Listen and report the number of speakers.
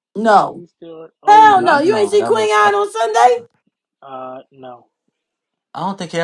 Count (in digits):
3